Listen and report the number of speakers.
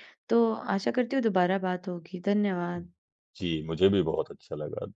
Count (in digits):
2